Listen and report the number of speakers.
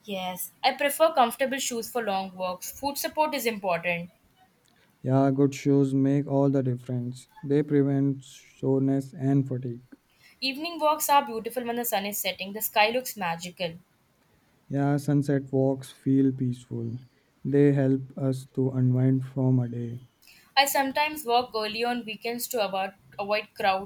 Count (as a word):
two